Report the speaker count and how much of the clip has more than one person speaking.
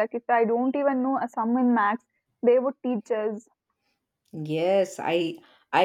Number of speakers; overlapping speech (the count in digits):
2, no overlap